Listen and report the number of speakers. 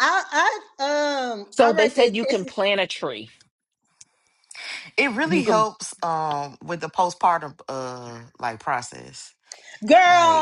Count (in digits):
3